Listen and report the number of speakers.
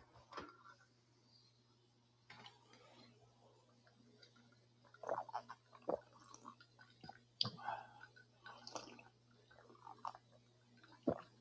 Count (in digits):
0